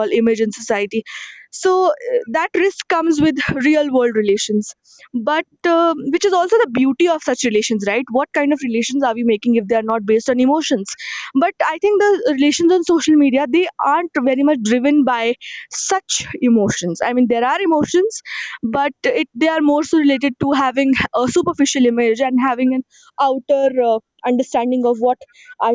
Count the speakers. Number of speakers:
one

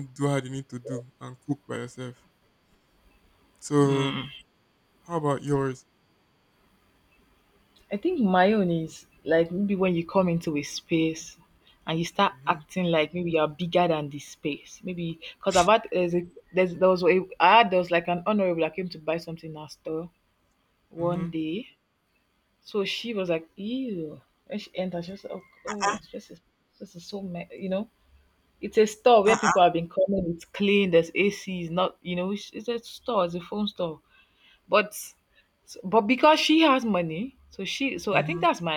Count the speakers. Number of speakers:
two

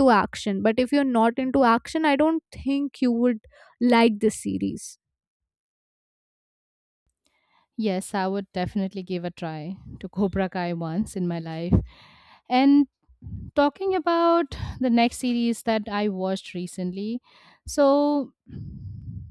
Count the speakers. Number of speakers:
two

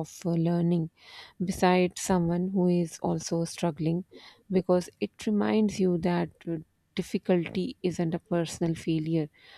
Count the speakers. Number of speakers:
one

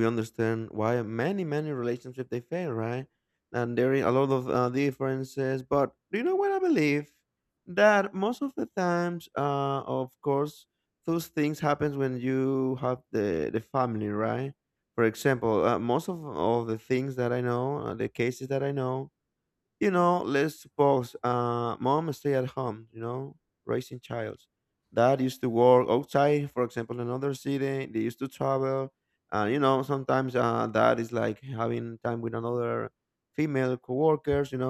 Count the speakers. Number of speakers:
one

